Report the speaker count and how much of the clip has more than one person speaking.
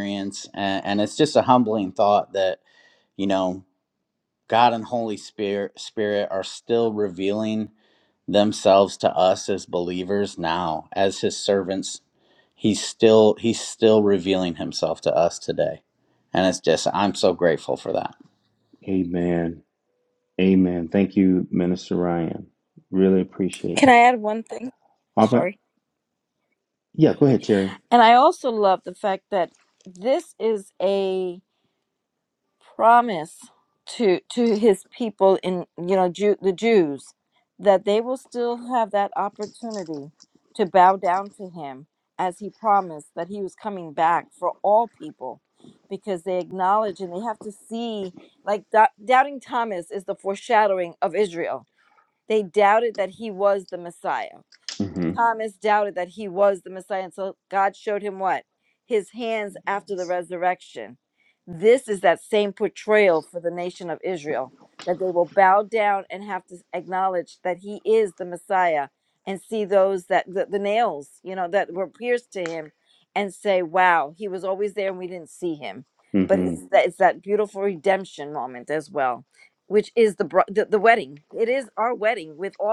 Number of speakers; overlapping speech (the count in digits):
3, about 1%